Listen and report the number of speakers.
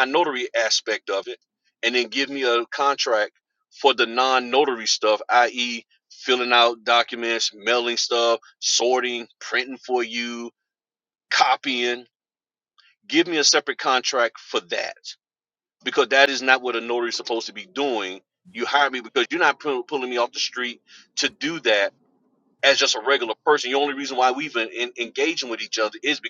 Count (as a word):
one